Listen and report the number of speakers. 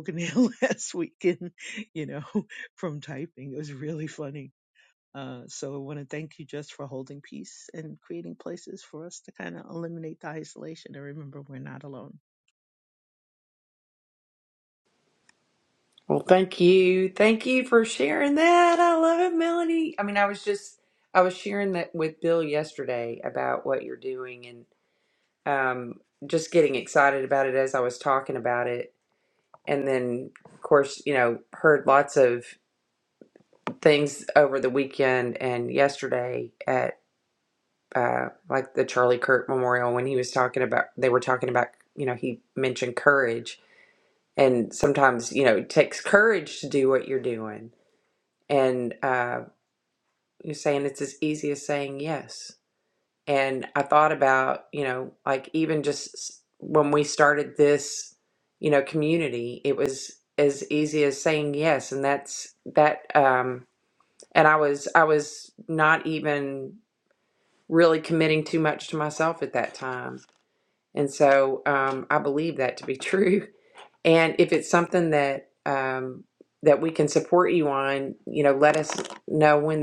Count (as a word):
two